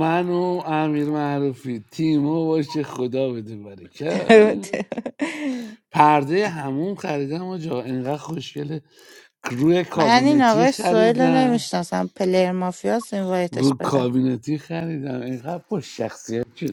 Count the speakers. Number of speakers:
2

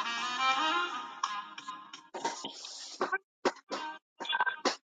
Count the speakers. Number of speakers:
0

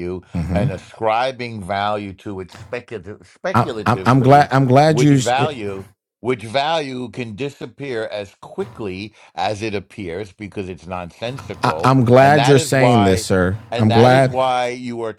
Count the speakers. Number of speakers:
2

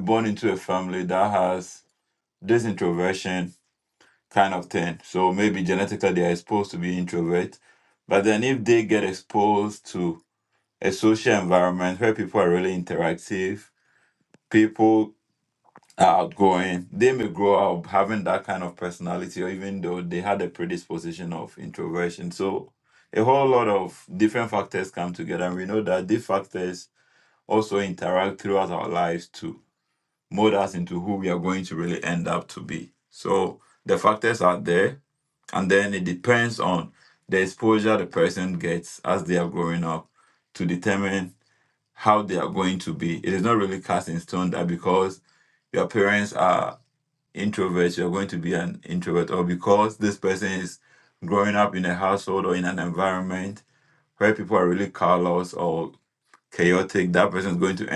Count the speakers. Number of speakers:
1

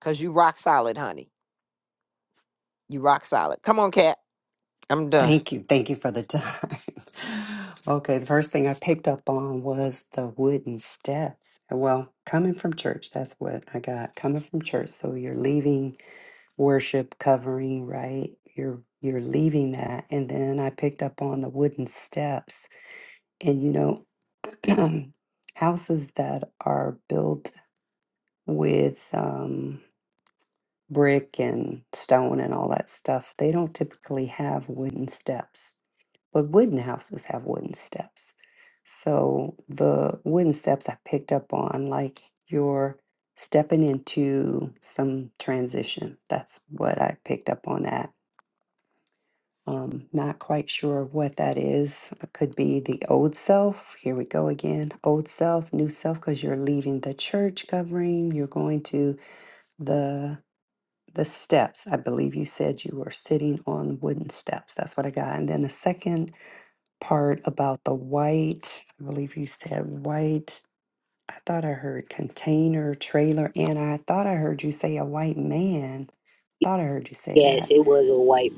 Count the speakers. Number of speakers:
3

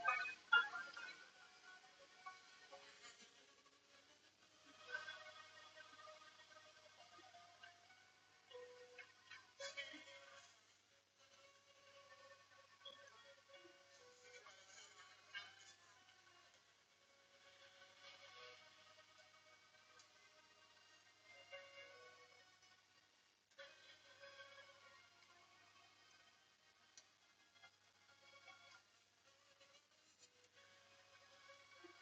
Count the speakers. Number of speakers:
0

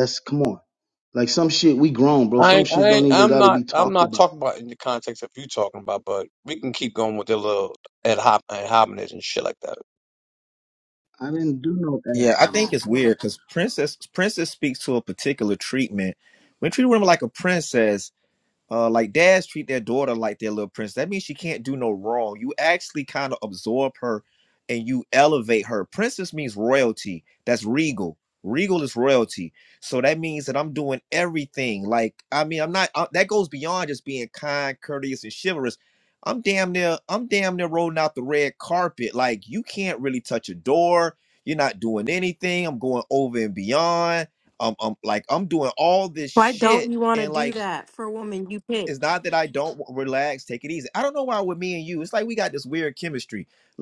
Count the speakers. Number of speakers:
4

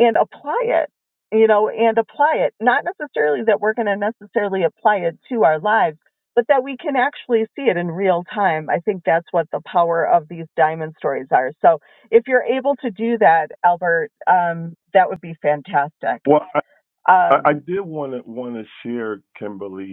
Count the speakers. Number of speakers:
2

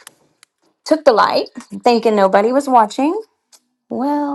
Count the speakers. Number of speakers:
1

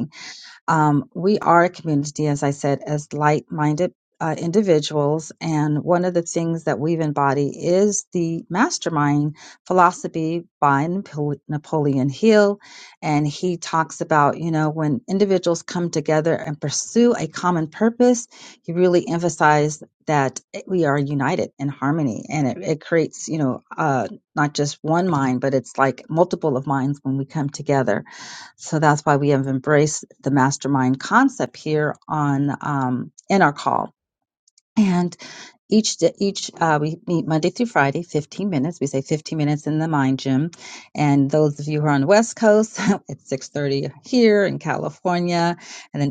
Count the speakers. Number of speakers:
1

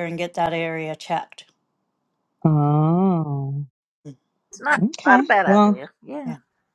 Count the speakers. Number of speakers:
3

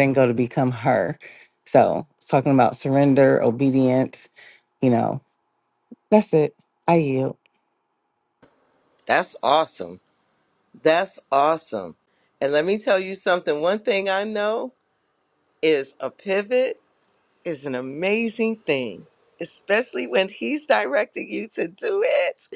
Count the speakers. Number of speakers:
2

